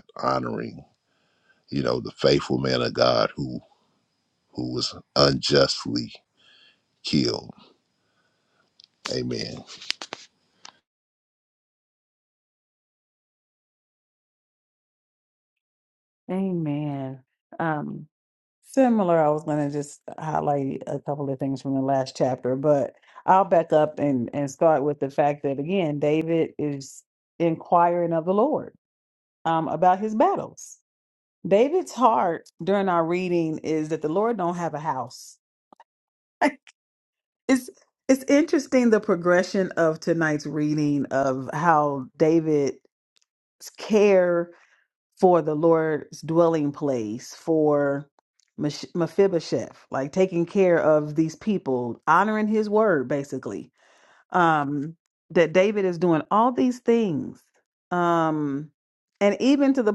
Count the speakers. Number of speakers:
2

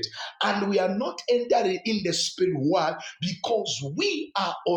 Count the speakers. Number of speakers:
1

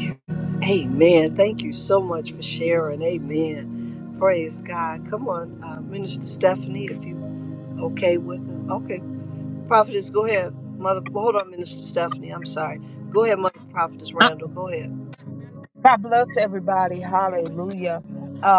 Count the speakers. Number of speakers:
2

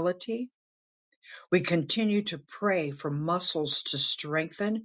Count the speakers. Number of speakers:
1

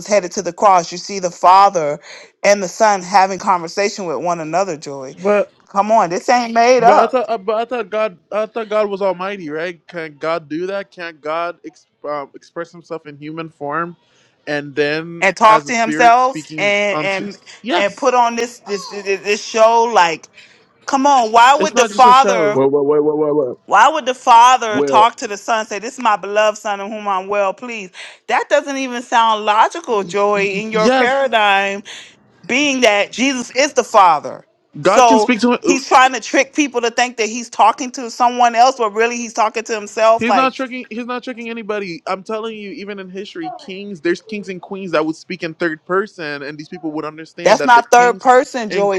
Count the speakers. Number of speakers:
3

